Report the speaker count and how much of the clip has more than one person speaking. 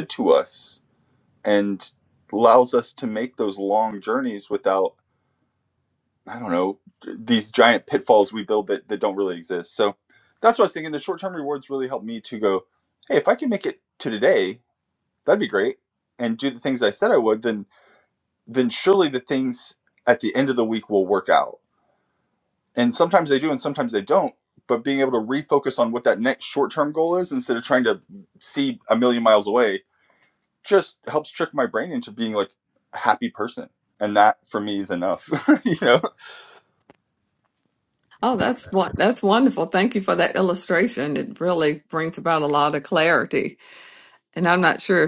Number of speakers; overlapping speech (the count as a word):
two, no overlap